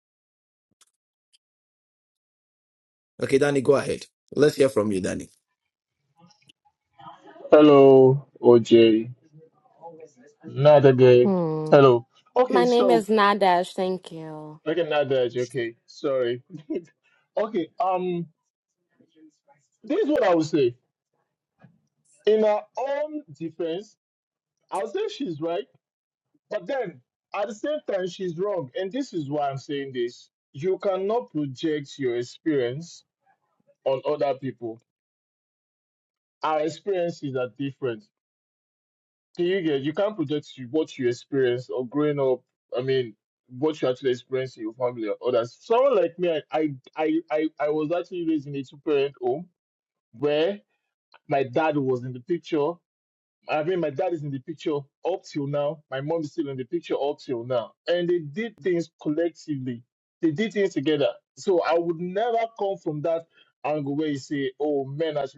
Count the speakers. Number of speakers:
three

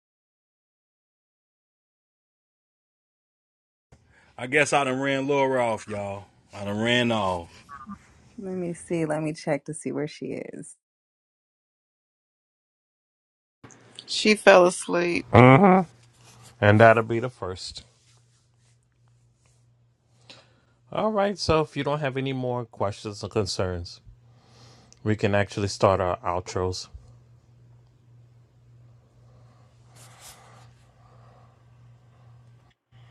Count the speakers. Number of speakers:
four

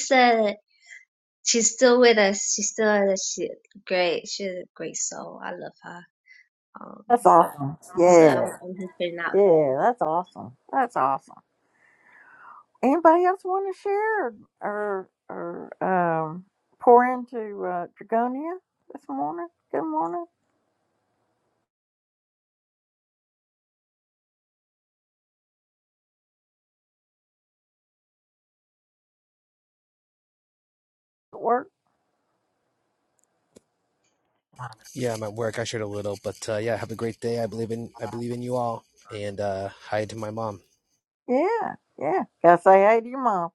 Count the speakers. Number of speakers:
three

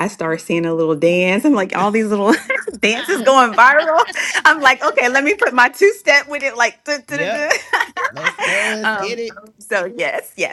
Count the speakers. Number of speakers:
two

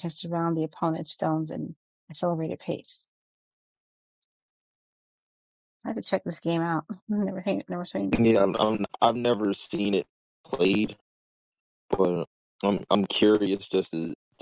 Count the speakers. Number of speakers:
two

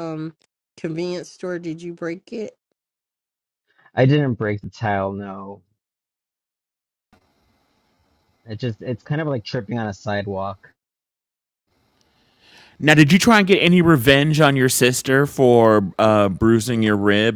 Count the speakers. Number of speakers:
three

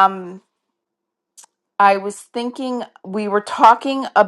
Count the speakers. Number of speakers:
one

